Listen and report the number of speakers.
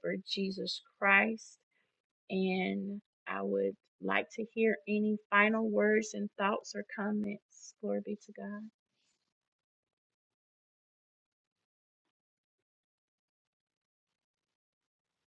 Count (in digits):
1